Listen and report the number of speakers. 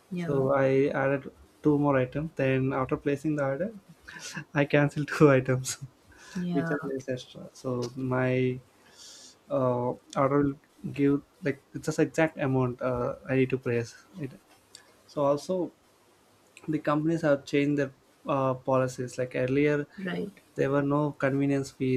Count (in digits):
2